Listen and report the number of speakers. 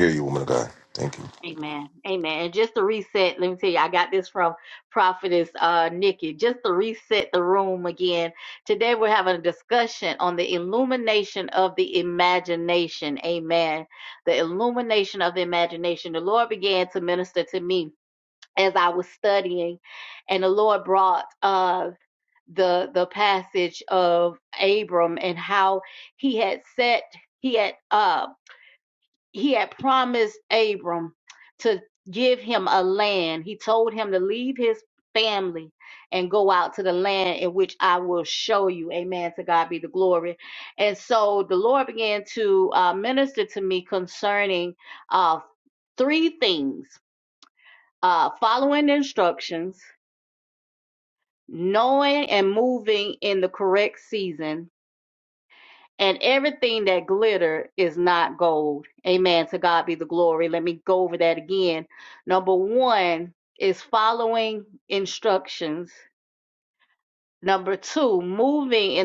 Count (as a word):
two